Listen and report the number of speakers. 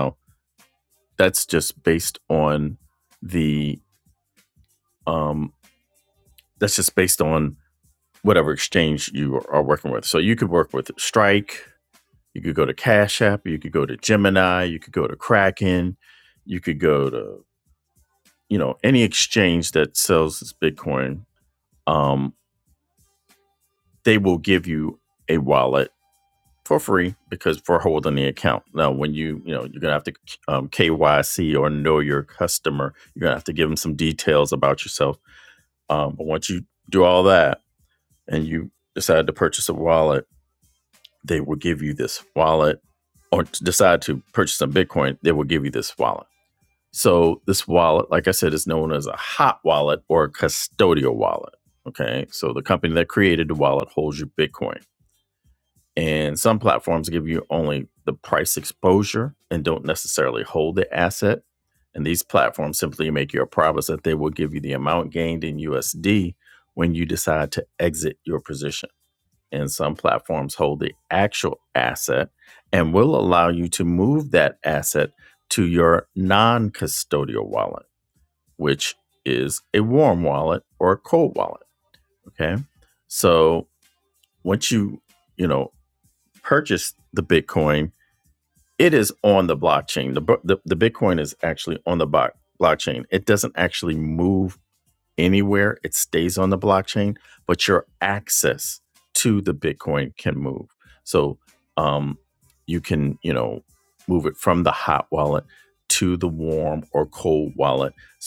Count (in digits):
1